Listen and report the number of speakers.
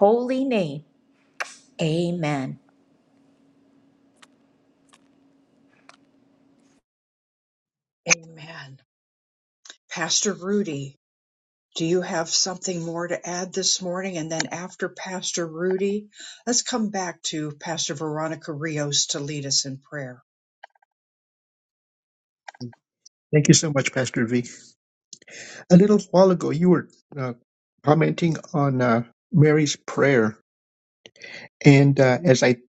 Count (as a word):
three